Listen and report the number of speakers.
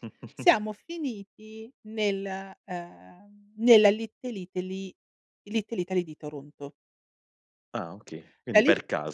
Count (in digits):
2